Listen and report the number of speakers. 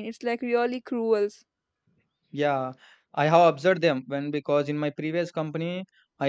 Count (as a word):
two